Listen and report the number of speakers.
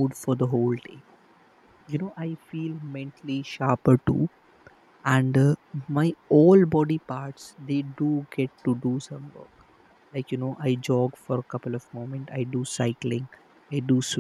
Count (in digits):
1